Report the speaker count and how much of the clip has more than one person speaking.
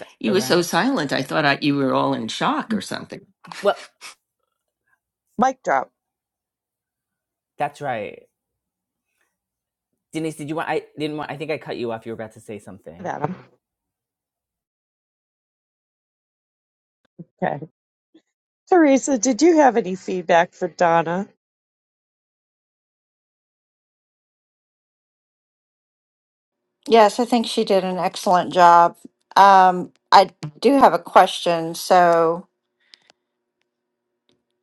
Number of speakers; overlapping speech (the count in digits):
4, about 2%